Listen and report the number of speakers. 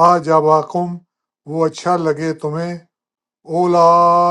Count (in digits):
1